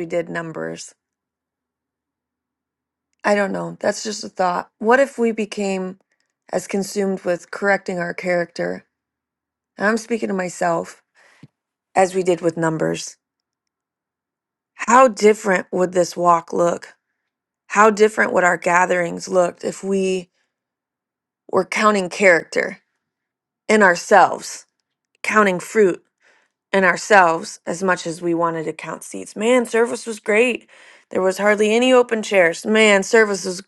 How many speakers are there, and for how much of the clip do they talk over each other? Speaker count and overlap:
one, no overlap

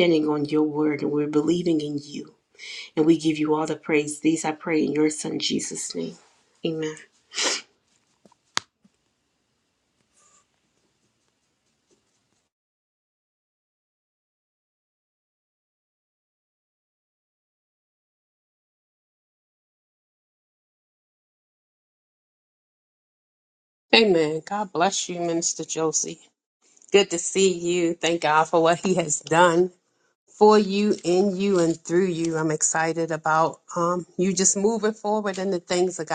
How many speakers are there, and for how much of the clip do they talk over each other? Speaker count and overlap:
two, no overlap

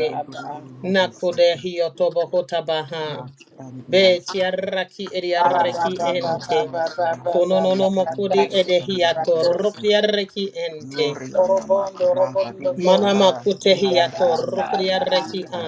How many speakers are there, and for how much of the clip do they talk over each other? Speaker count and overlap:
three, about 67%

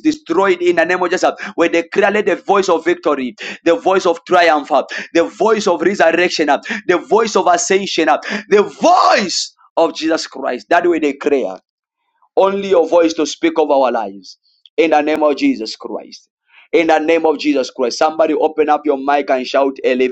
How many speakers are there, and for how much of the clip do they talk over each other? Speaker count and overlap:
one, no overlap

